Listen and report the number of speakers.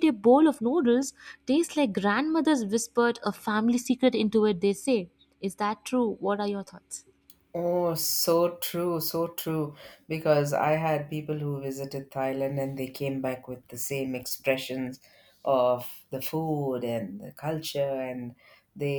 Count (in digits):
2